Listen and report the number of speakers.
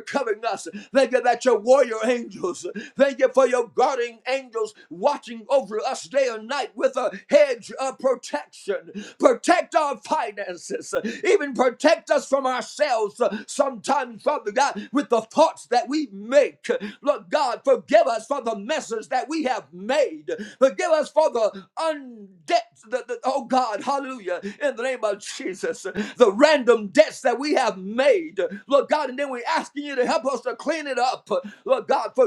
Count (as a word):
one